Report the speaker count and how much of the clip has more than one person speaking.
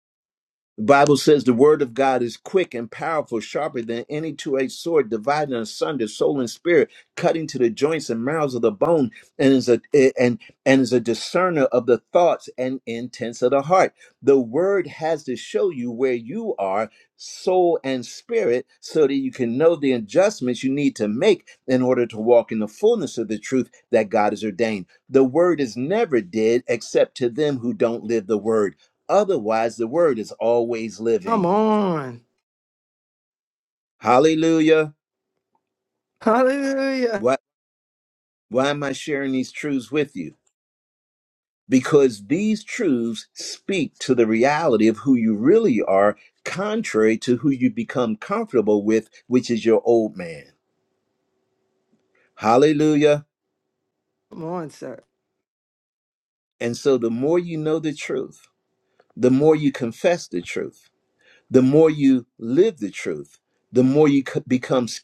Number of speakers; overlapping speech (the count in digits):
2, under 1%